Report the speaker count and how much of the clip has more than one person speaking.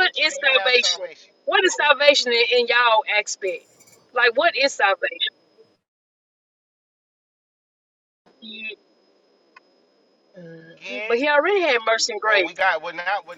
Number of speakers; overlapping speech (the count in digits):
2, about 11%